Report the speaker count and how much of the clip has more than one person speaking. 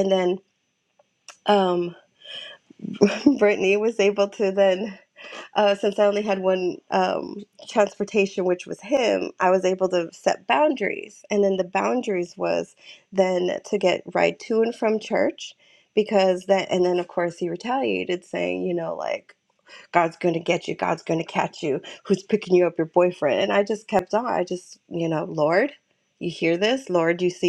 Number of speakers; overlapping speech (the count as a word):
one, no overlap